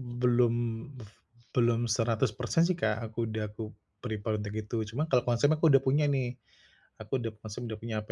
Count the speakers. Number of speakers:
1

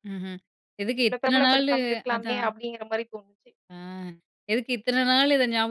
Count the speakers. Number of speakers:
2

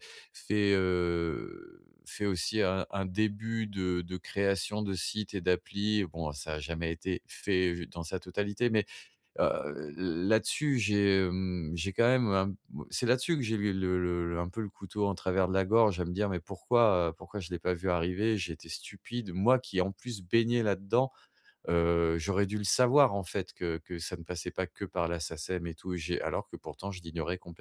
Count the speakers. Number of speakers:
1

